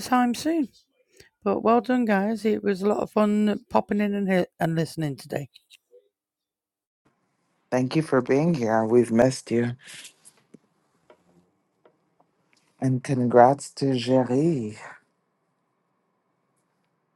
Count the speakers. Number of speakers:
two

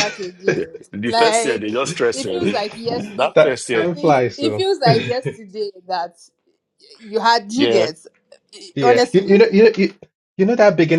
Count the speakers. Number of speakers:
three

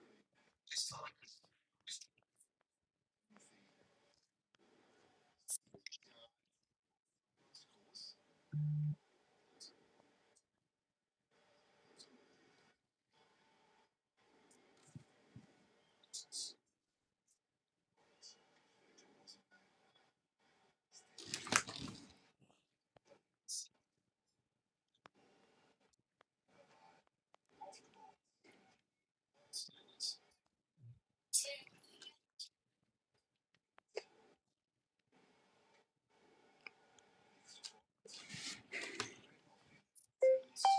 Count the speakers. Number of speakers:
zero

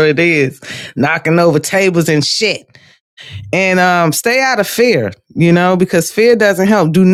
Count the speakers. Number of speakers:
one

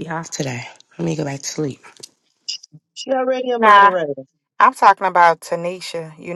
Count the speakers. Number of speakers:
three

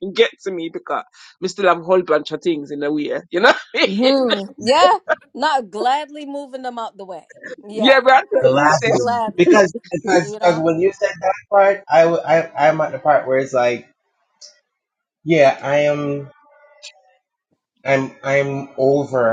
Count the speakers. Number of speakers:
three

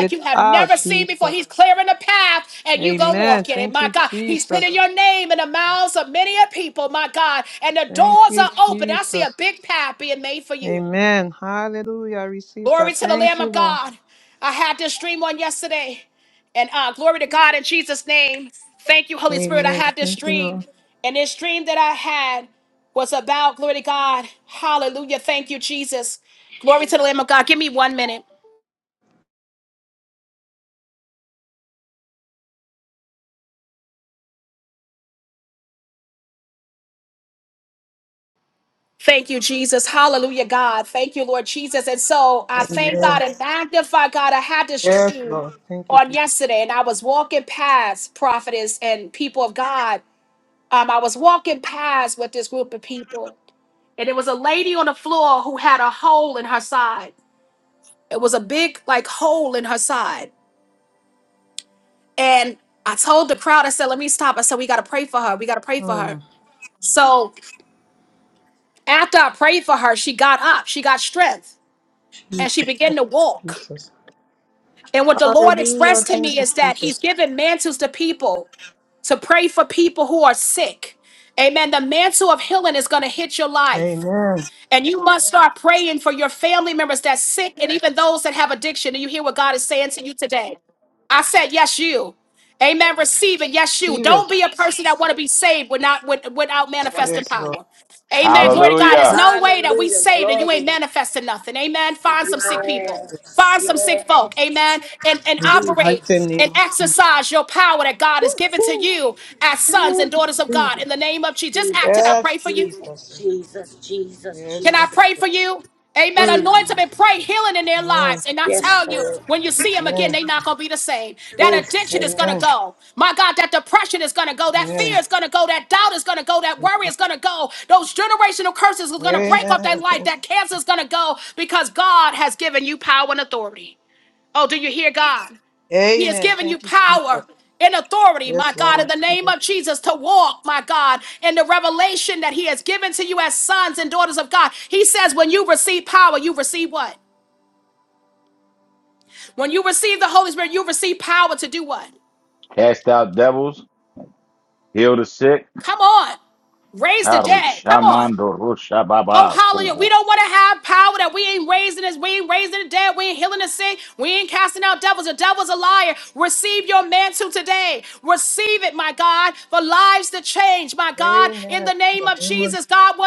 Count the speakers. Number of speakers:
four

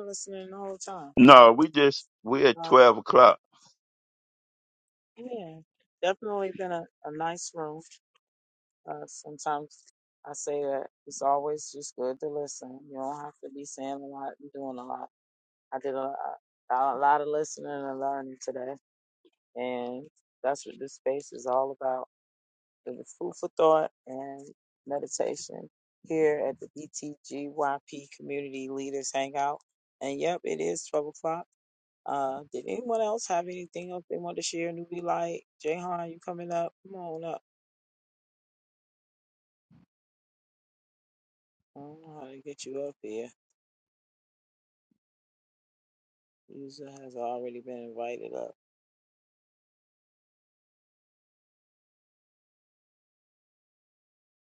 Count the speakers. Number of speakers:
two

